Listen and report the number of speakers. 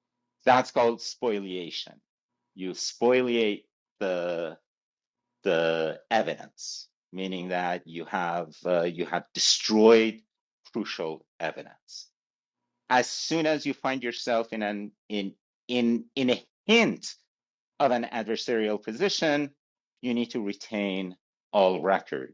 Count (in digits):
1